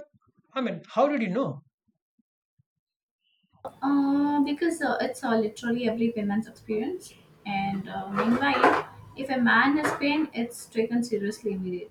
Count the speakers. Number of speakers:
two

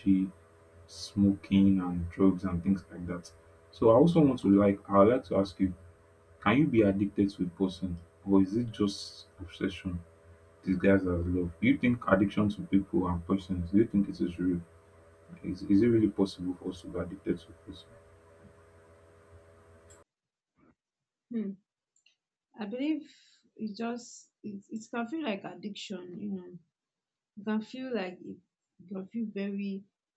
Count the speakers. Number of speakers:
two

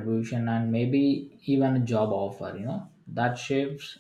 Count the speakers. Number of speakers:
one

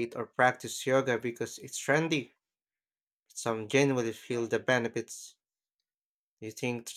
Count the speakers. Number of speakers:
one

